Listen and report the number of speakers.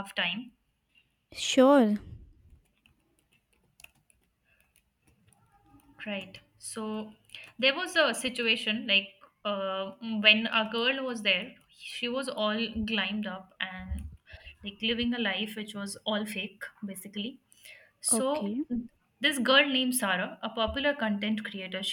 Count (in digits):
2